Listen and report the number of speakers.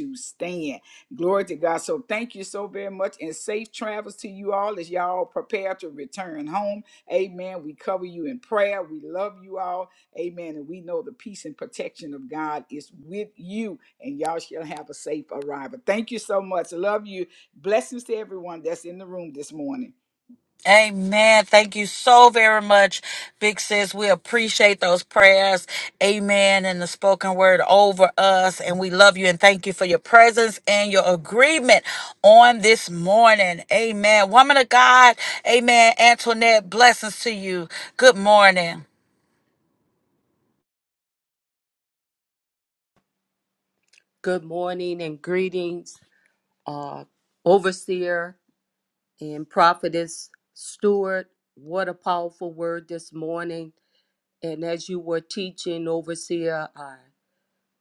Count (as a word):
three